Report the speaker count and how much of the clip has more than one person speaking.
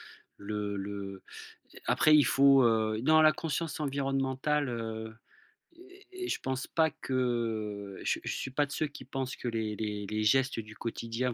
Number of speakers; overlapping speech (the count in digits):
1, no overlap